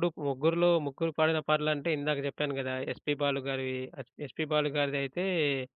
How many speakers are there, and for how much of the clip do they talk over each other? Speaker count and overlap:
one, no overlap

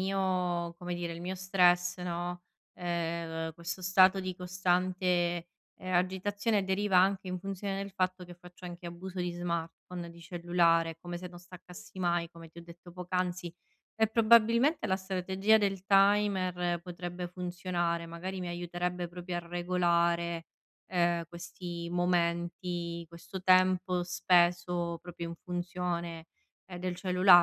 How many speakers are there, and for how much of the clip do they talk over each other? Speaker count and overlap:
one, no overlap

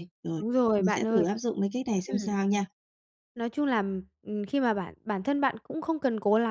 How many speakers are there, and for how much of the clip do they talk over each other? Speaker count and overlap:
two, about 11%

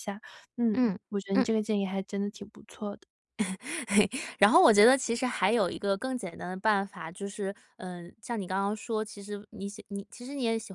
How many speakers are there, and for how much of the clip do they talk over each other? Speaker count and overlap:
two, about 2%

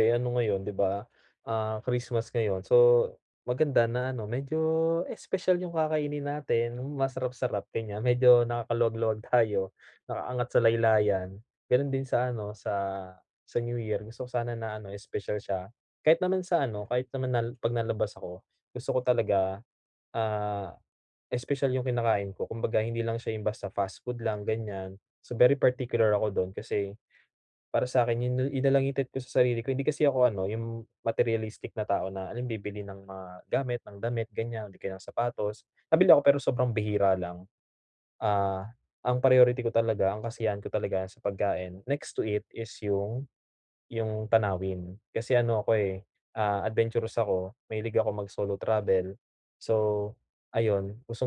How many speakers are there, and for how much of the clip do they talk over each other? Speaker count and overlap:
one, no overlap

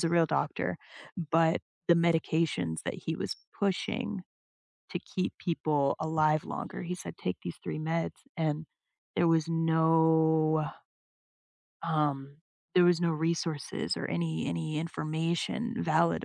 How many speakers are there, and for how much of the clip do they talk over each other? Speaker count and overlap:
one, no overlap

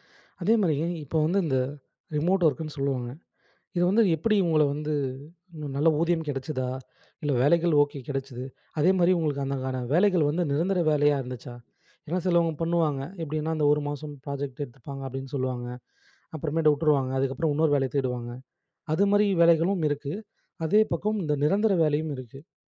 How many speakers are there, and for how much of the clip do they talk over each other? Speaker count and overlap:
one, no overlap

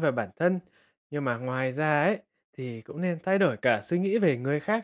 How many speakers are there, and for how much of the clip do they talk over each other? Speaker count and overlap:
one, no overlap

